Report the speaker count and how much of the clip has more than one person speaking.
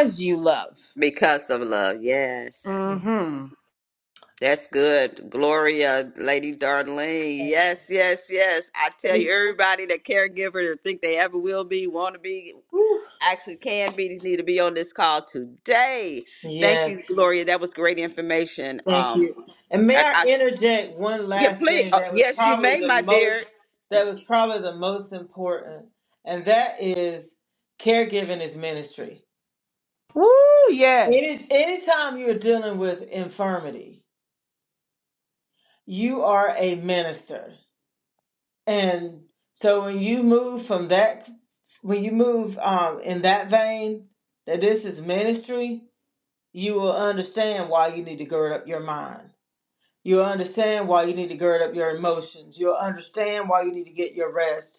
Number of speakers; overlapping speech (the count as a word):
three, about 7%